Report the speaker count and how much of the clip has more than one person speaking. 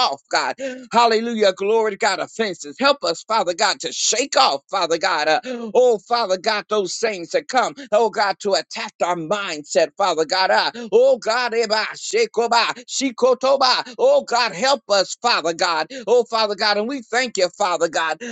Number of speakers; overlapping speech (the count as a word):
one, no overlap